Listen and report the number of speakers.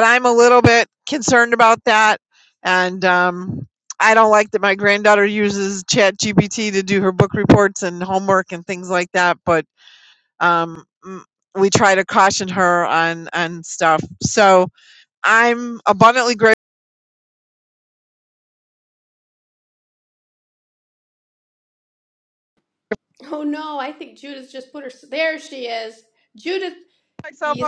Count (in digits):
2